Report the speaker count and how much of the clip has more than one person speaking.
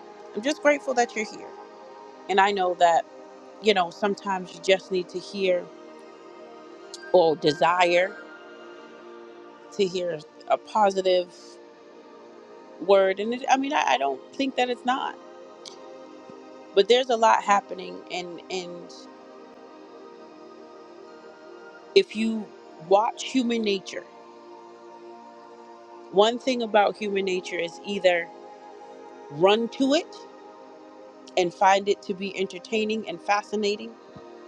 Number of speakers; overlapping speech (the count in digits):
1, no overlap